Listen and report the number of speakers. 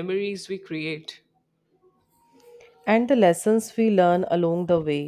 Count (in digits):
2